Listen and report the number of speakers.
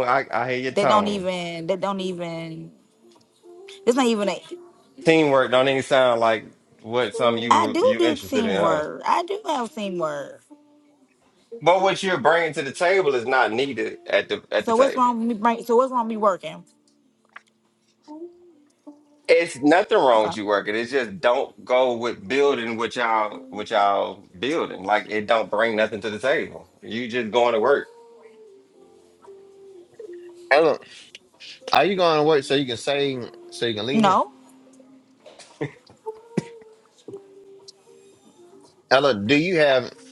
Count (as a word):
three